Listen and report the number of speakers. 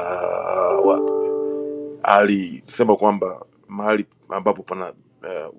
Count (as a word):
one